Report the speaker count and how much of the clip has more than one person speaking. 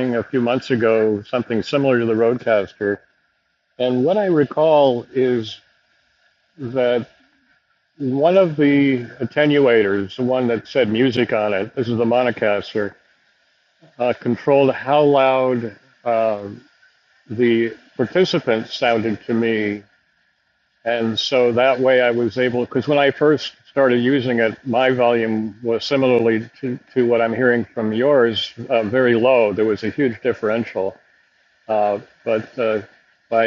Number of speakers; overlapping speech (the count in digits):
1, no overlap